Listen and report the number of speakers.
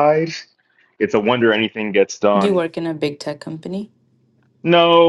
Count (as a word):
two